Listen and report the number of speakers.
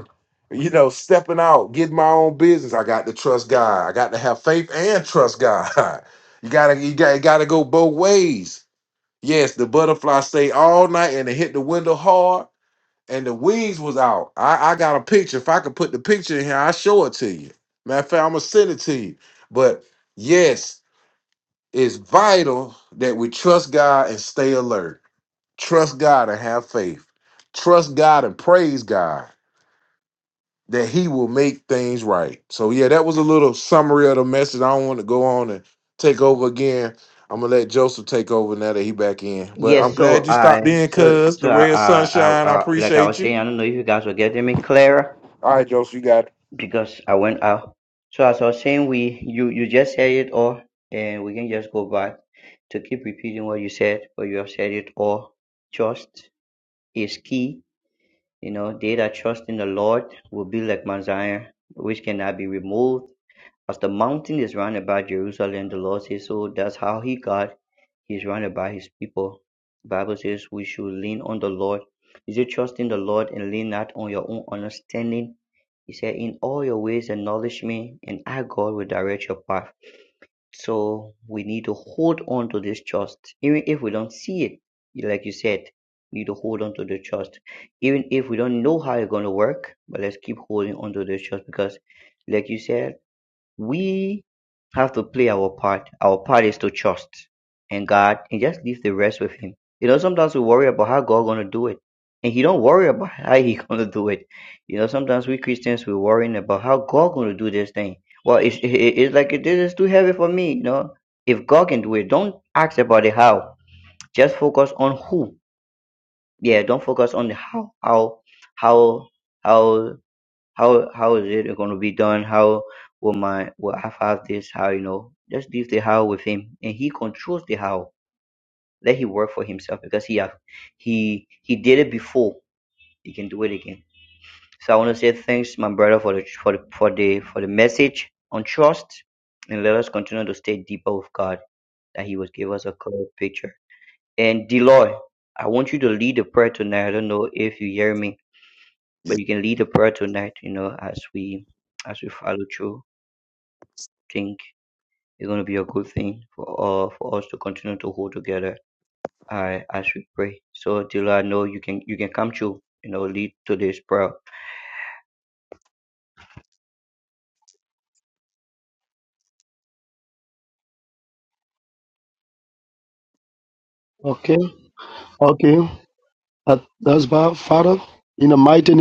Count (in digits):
3